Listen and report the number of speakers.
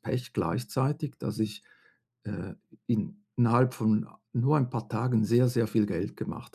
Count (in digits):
1